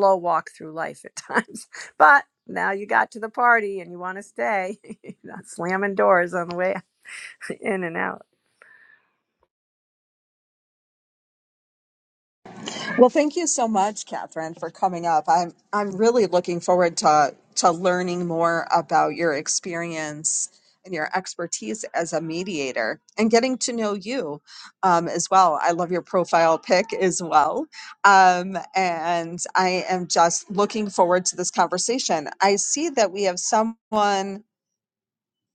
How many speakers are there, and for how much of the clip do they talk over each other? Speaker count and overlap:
2, no overlap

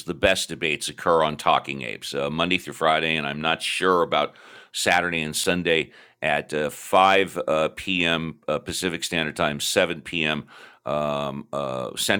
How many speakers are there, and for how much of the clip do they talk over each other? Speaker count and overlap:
1, no overlap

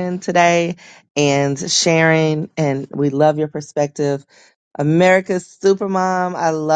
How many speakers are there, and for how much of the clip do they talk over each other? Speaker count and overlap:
1, no overlap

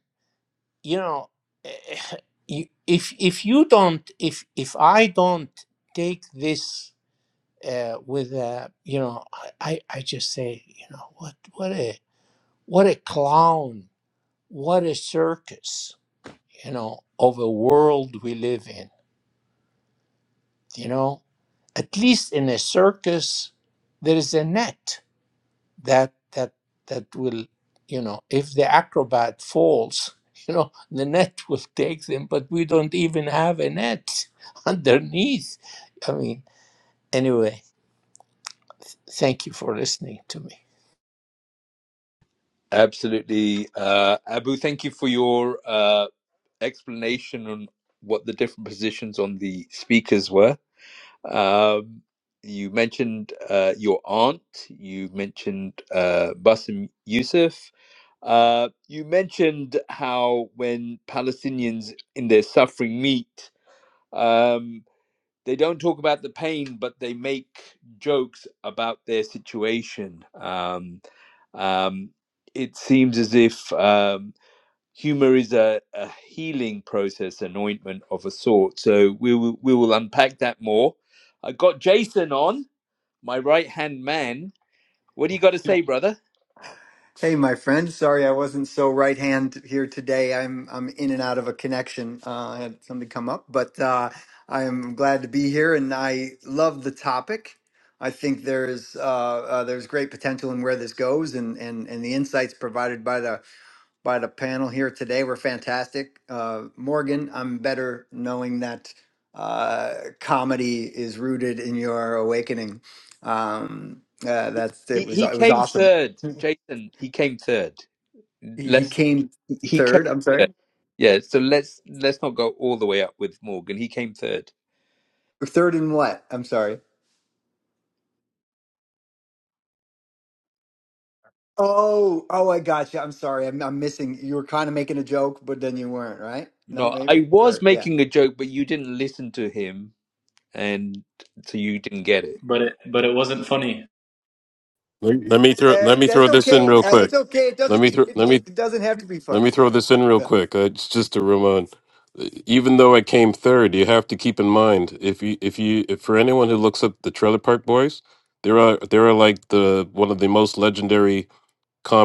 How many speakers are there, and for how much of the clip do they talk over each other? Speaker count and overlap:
5, about 4%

